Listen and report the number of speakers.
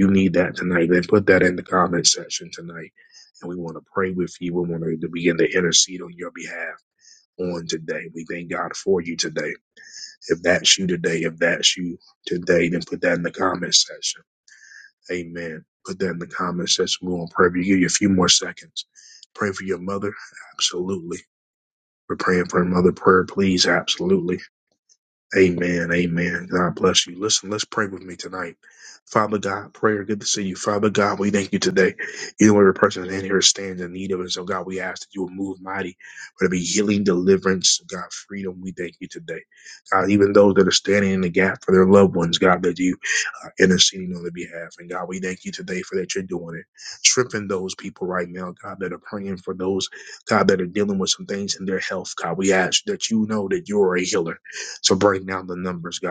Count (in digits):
1